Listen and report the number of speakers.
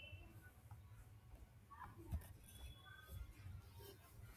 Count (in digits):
0